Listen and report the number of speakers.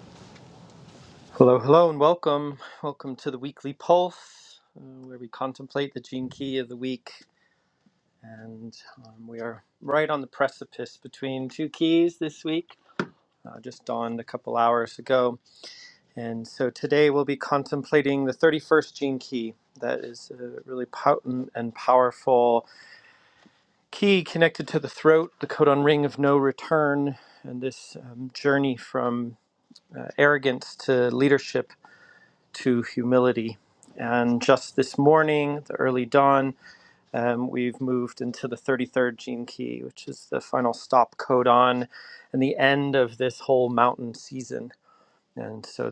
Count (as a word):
one